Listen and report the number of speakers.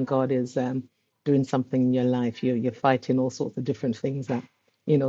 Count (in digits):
1